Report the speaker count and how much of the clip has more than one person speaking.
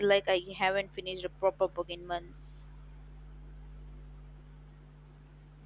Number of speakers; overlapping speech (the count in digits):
1, no overlap